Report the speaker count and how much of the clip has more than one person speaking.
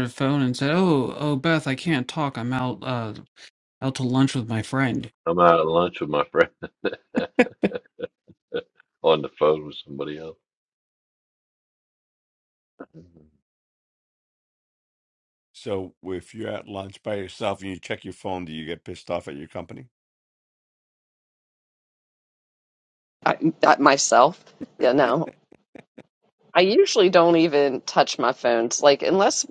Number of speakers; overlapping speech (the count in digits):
4, no overlap